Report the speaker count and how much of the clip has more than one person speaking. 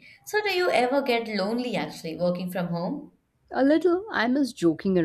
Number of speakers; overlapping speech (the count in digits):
2, no overlap